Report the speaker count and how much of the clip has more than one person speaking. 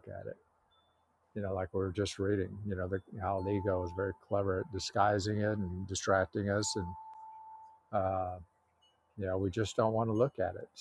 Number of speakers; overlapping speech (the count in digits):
1, no overlap